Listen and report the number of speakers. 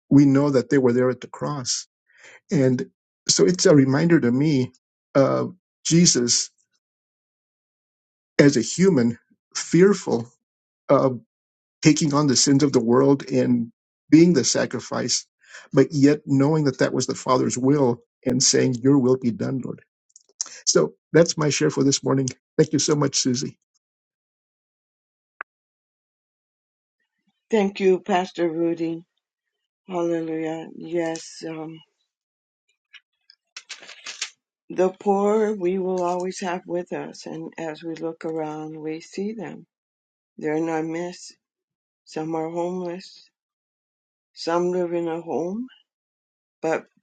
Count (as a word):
two